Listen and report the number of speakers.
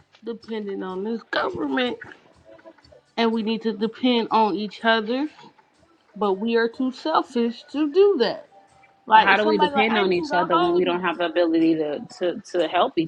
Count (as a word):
two